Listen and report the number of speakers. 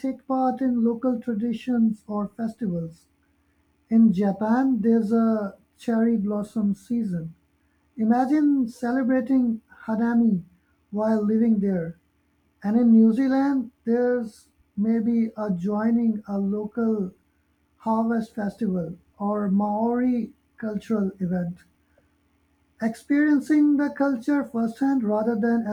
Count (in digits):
1